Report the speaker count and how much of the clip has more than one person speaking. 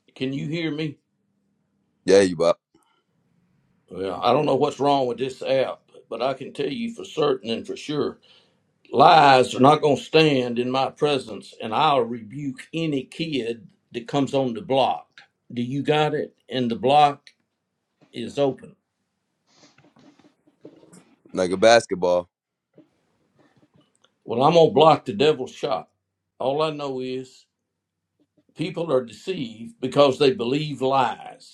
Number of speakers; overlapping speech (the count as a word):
two, no overlap